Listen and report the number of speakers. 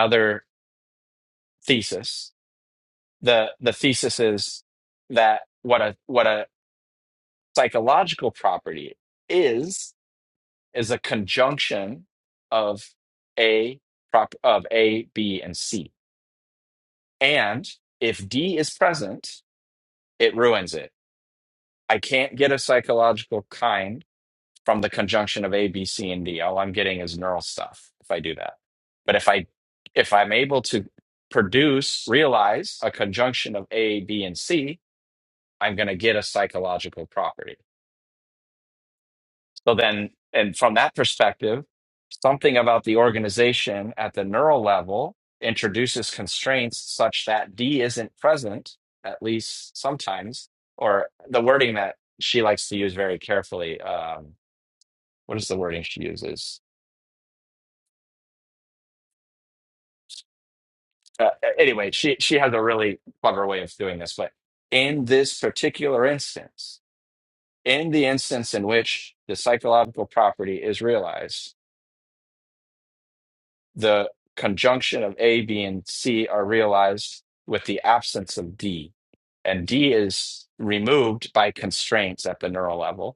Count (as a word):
one